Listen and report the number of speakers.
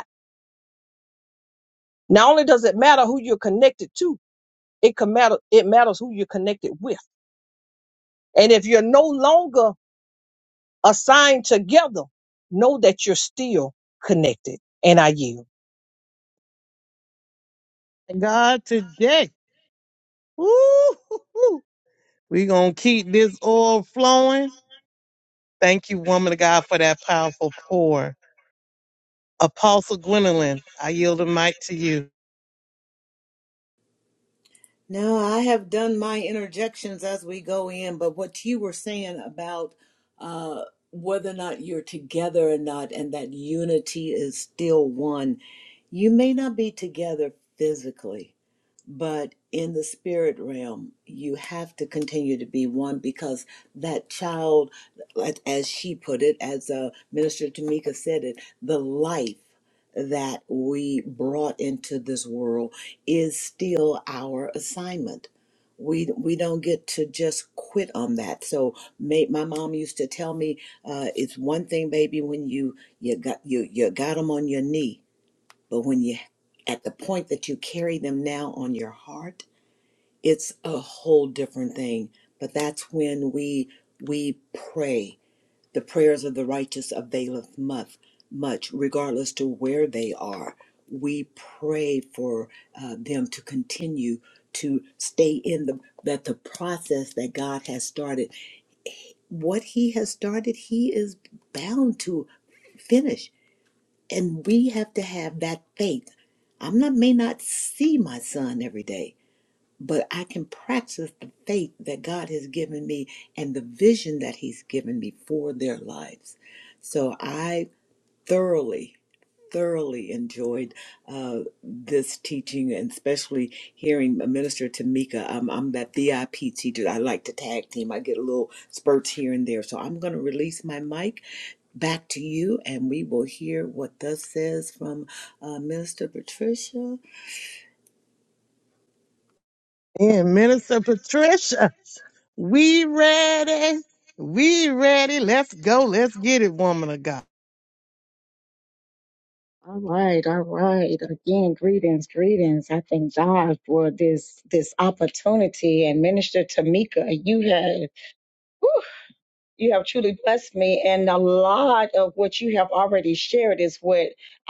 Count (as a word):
four